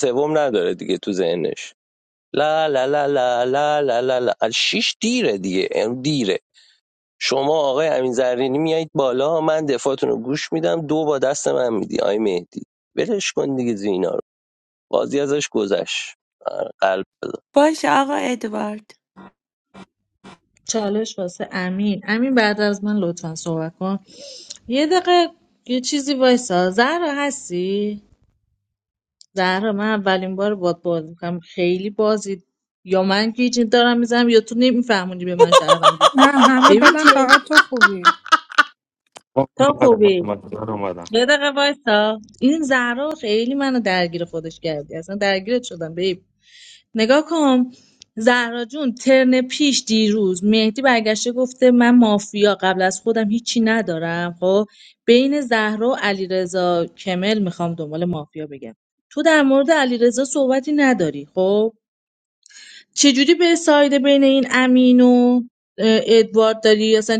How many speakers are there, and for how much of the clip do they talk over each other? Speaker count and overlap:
5, about 2%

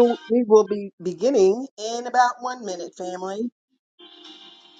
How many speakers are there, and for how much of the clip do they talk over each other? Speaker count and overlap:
1, no overlap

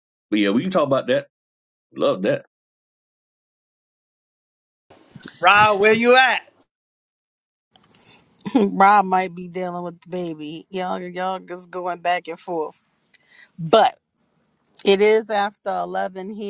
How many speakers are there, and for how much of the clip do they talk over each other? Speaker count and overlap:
3, no overlap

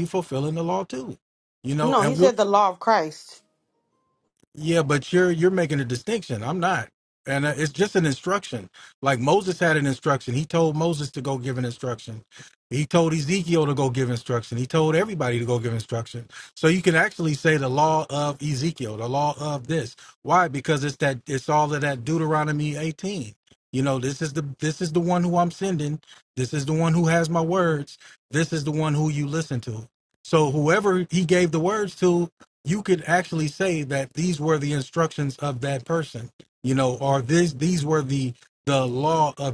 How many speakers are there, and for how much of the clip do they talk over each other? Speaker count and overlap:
2, about 1%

